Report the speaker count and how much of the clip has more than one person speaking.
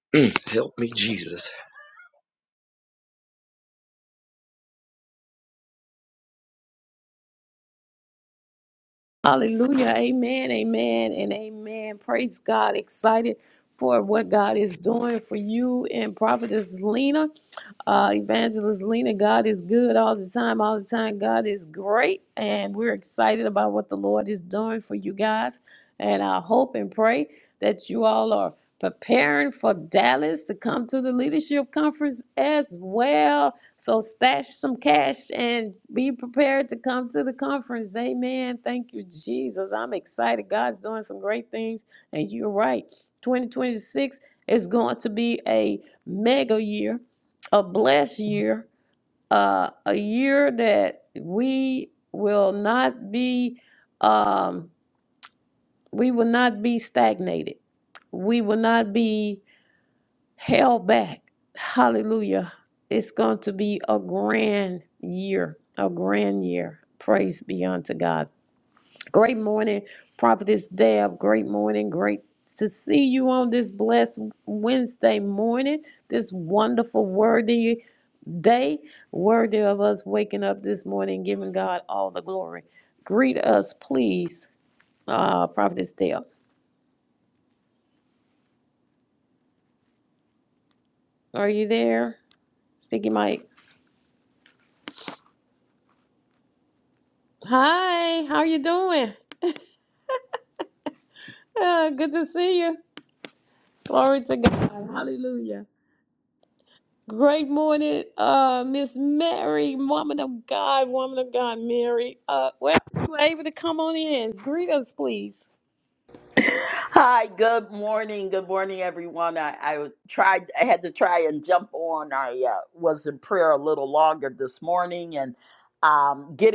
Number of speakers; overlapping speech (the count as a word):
three, no overlap